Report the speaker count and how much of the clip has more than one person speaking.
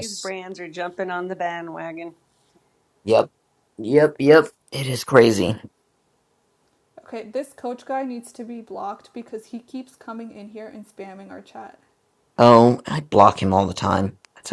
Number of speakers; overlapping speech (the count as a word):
three, under 1%